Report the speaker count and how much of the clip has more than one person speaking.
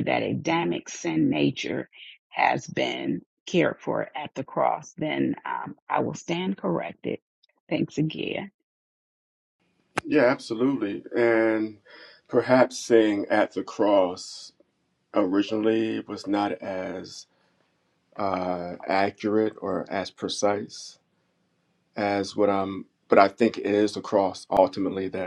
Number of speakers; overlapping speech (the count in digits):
2, no overlap